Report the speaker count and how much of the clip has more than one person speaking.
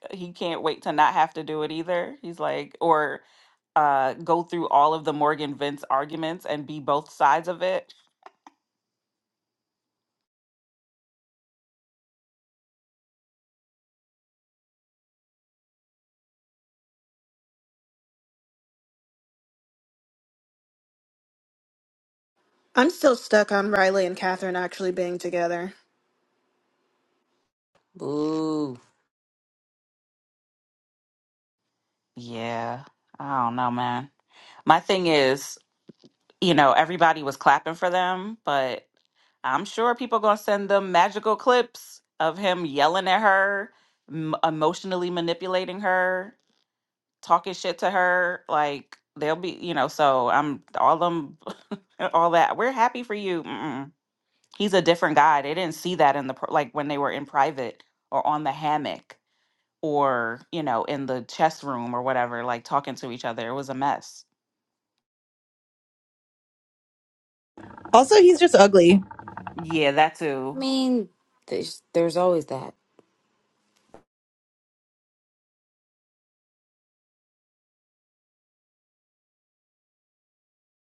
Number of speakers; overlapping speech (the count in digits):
4, under 1%